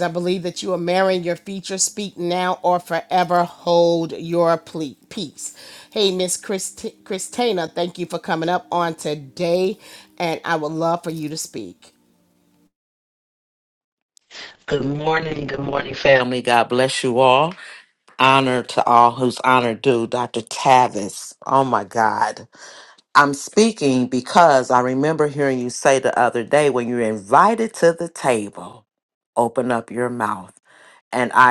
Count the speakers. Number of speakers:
2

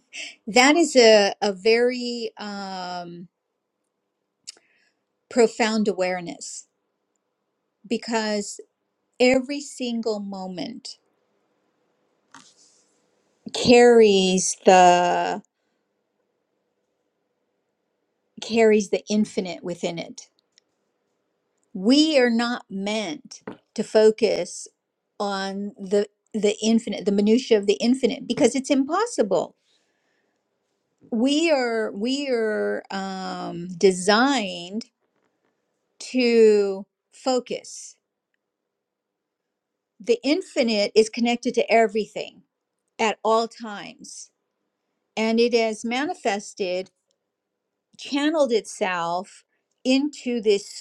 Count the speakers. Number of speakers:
1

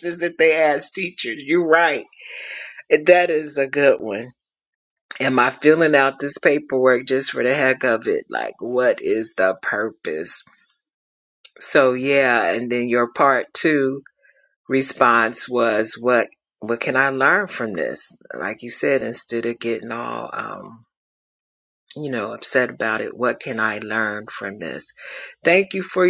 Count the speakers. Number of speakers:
1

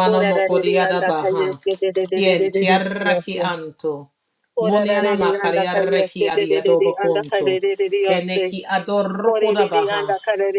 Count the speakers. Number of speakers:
2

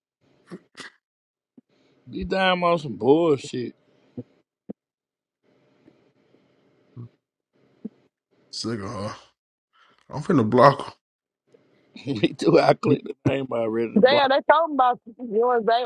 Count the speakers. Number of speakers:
3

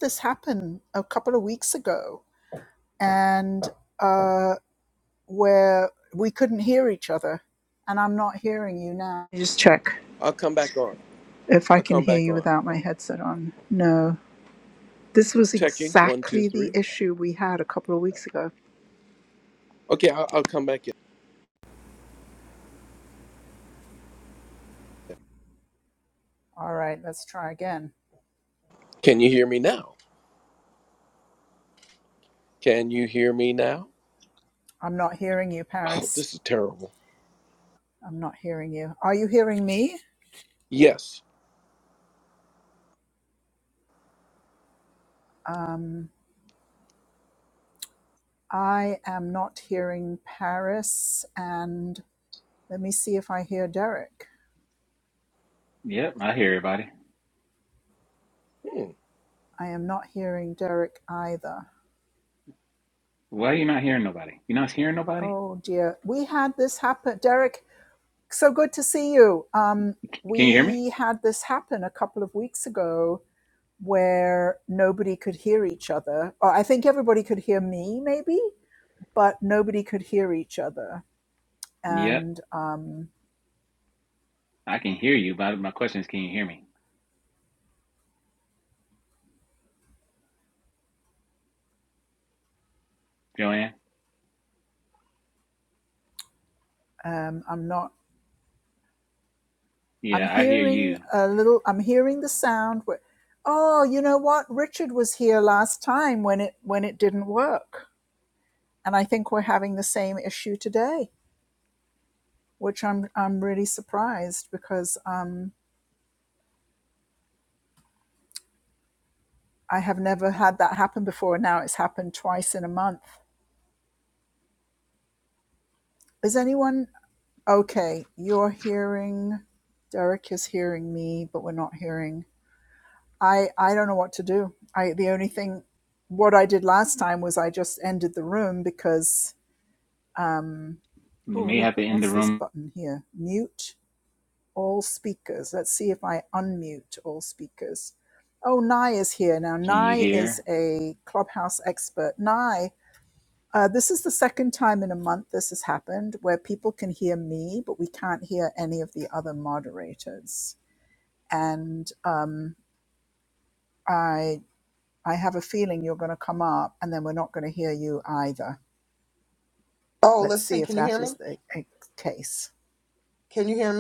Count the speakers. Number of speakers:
4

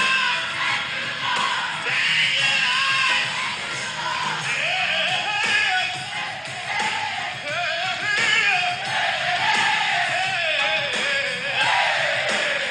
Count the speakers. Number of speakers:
0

